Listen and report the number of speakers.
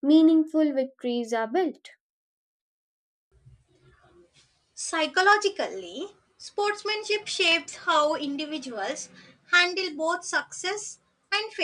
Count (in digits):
2